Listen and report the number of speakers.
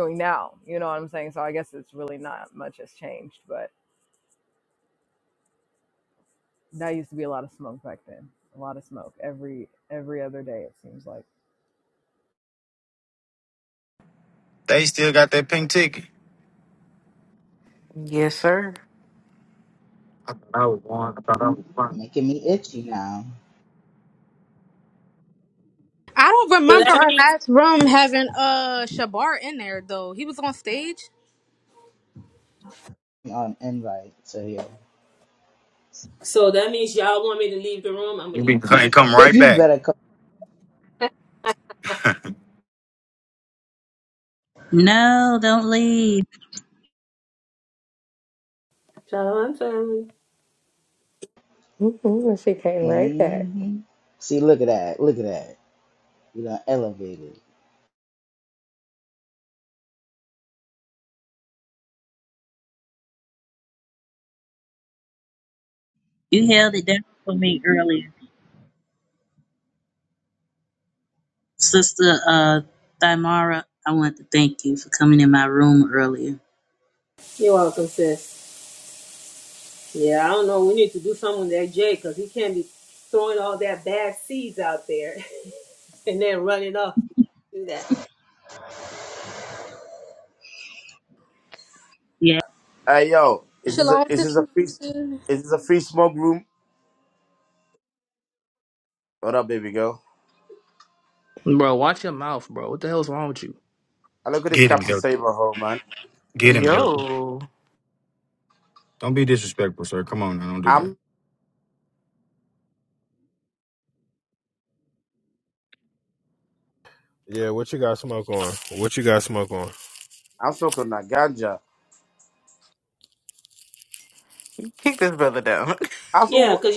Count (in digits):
11